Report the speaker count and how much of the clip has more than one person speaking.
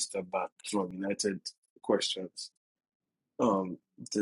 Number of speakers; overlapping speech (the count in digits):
1, no overlap